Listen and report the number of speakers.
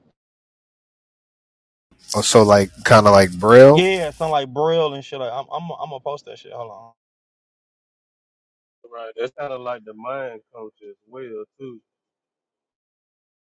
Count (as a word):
three